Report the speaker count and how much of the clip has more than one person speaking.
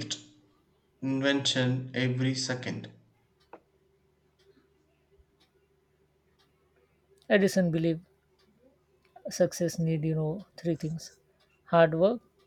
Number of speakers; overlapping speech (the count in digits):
2, no overlap